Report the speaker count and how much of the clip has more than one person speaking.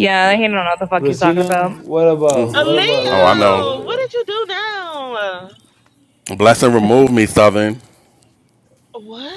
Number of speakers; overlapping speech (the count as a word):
four, about 25%